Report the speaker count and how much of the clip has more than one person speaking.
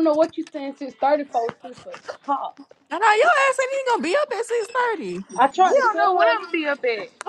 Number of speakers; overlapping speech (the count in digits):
3, about 10%